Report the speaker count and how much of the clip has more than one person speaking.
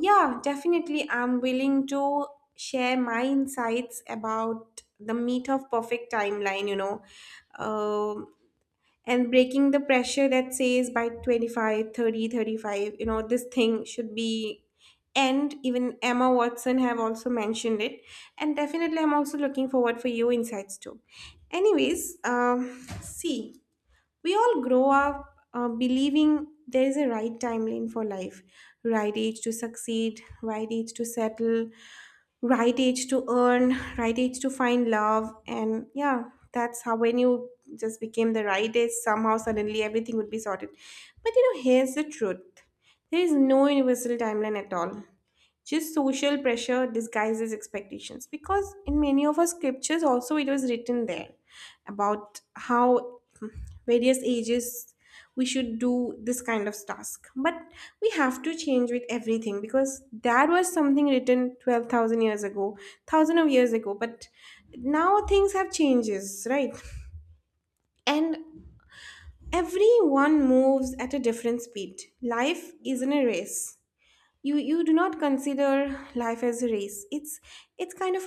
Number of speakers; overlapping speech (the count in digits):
1, no overlap